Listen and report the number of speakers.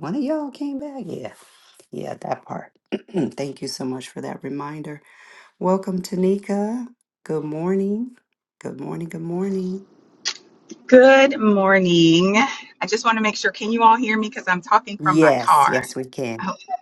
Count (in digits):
2